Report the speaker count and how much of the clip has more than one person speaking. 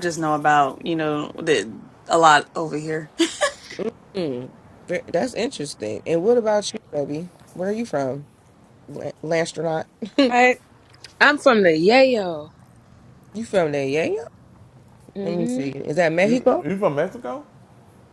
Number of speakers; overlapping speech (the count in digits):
4, about 5%